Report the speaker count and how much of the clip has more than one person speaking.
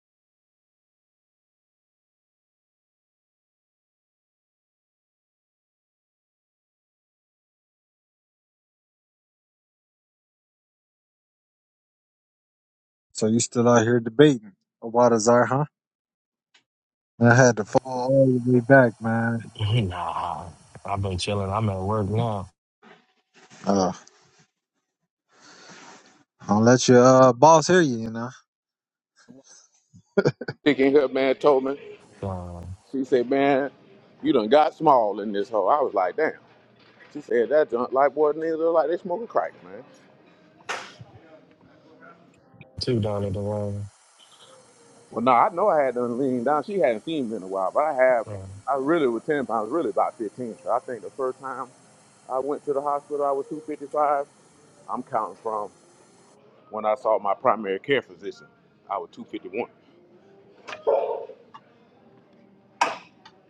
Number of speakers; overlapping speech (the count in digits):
3, no overlap